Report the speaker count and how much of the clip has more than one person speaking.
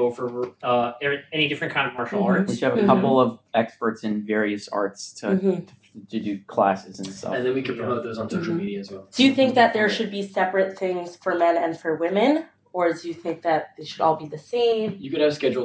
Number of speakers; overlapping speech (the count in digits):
4, about 13%